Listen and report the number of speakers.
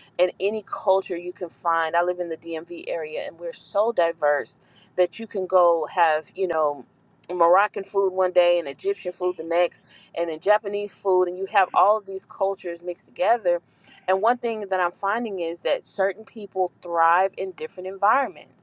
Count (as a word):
one